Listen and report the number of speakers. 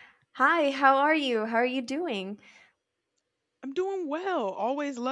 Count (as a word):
two